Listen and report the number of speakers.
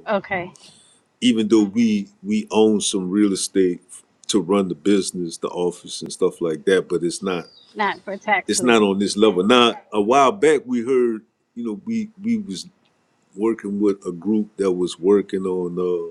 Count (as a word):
two